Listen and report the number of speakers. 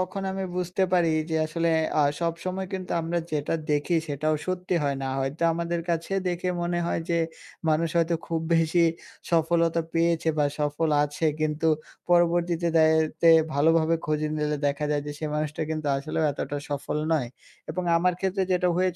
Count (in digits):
1